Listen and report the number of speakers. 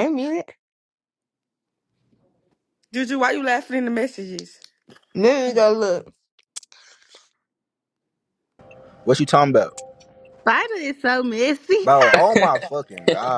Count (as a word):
four